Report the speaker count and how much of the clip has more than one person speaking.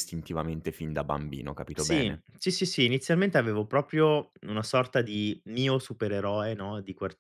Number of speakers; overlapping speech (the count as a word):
two, about 6%